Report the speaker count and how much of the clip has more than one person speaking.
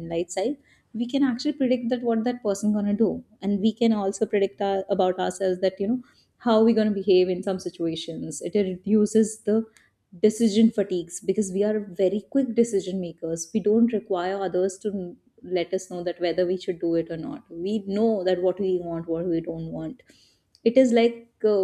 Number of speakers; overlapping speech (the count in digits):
1, no overlap